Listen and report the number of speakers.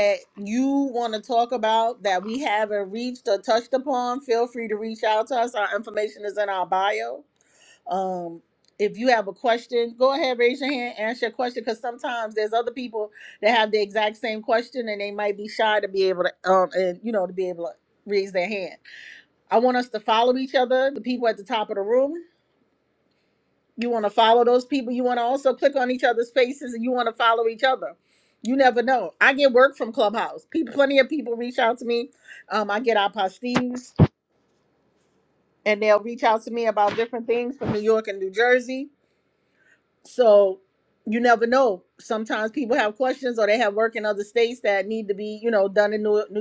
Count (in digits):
1